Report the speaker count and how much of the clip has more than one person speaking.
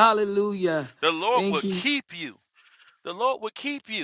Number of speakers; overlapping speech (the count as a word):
two, about 11%